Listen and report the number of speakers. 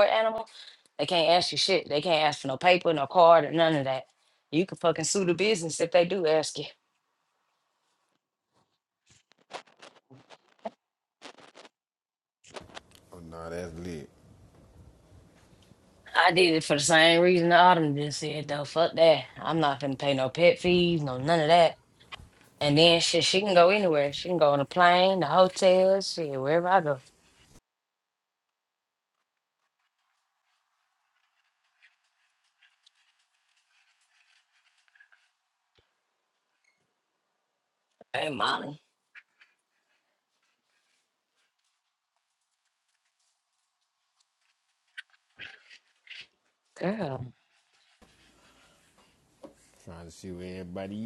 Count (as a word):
two